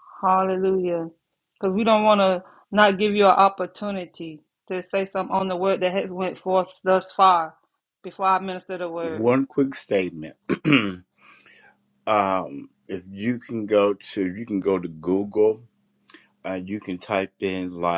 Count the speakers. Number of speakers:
two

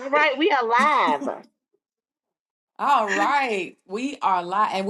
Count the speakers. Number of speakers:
two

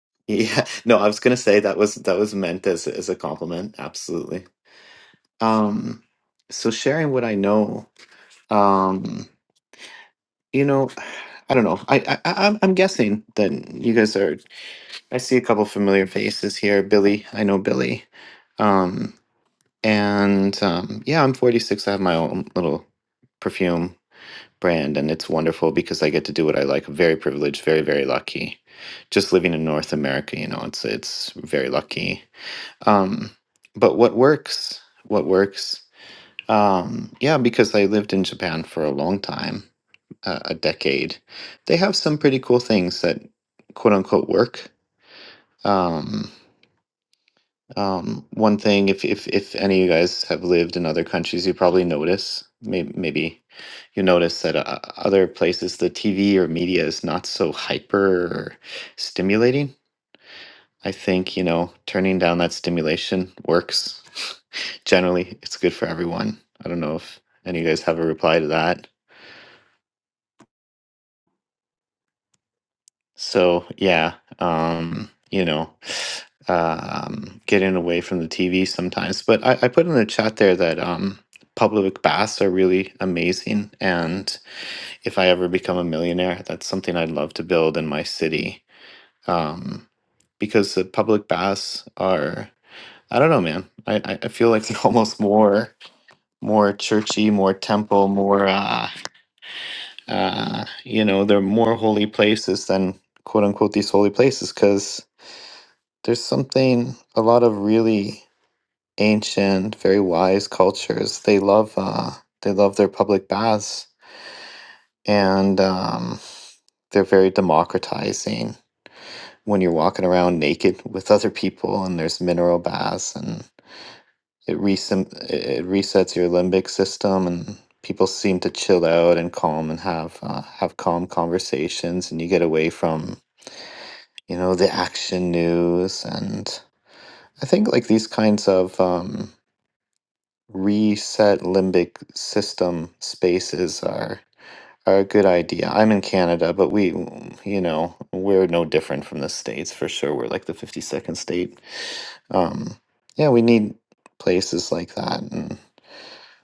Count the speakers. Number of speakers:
one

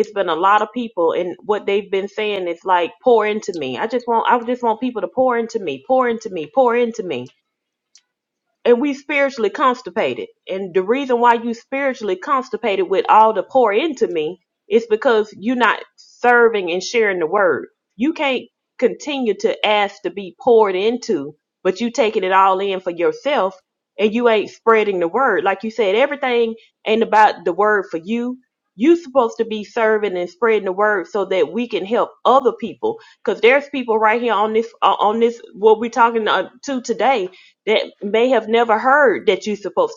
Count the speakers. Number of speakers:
one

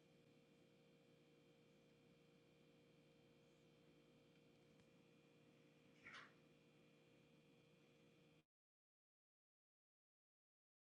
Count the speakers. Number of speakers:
zero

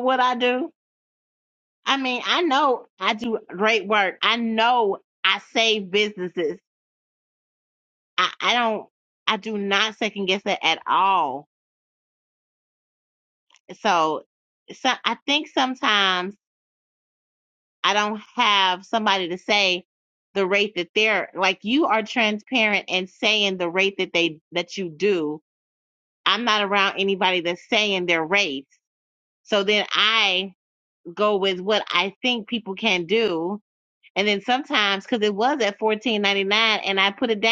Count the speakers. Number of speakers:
one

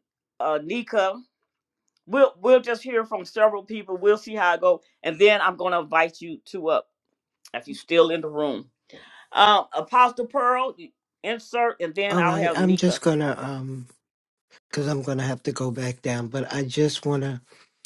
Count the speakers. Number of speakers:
two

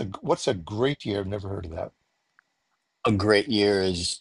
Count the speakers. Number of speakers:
two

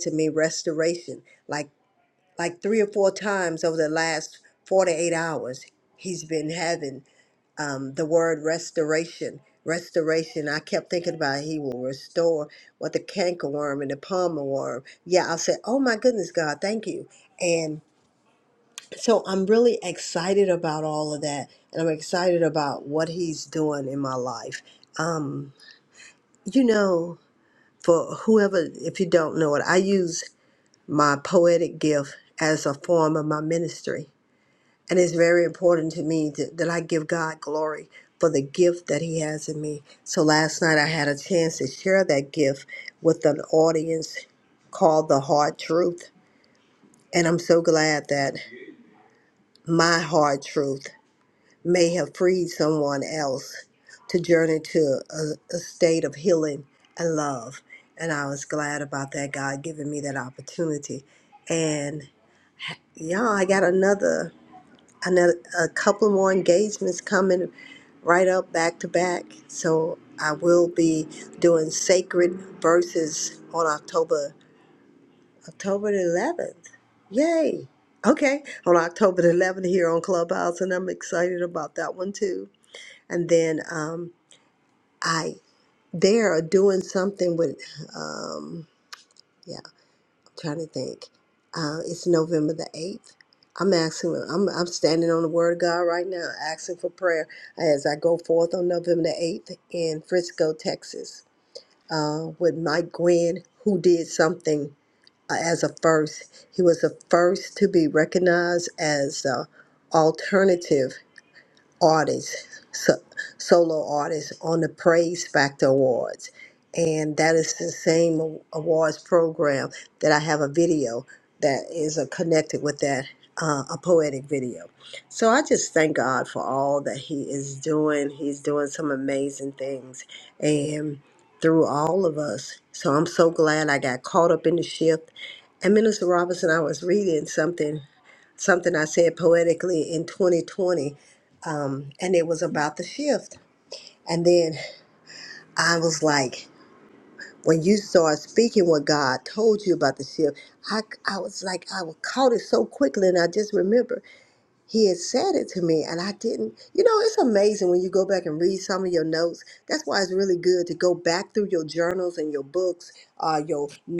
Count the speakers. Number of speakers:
one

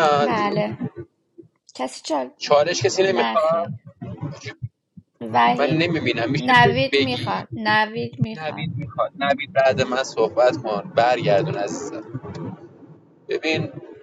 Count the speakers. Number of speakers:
two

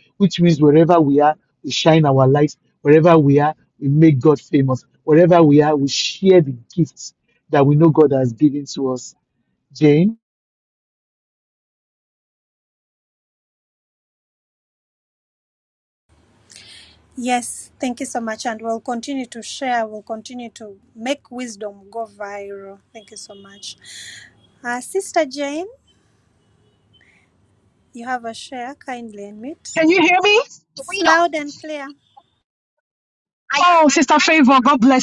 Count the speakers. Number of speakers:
three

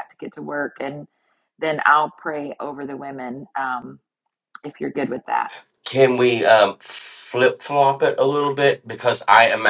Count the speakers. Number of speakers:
two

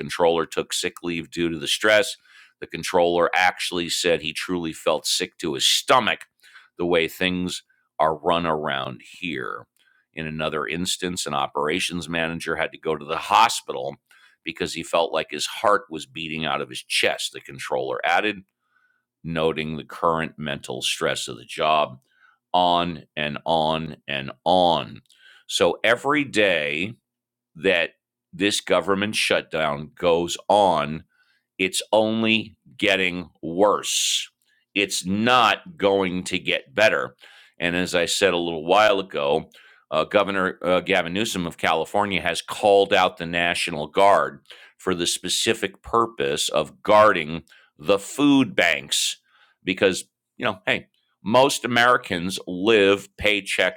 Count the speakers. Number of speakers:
one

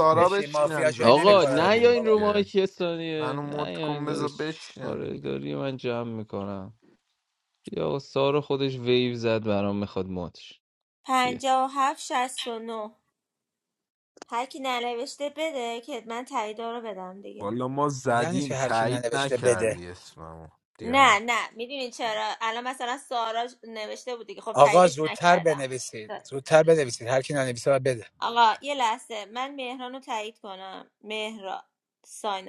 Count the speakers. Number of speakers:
four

